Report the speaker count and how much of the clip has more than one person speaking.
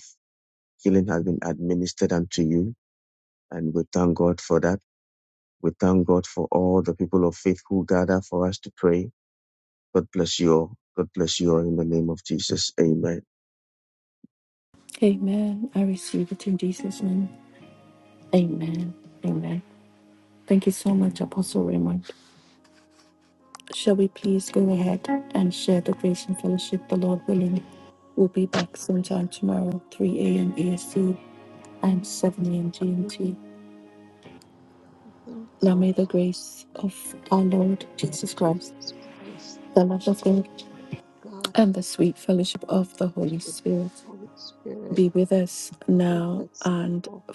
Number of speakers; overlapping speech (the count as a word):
three, about 5%